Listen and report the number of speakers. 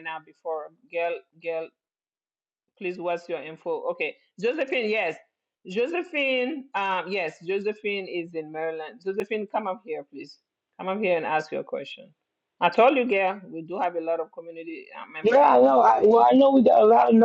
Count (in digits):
2